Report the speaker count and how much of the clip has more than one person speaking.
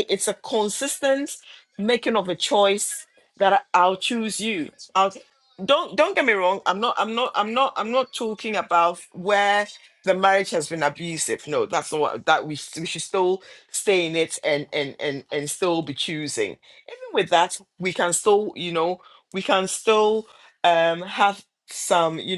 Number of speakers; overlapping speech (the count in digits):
1, no overlap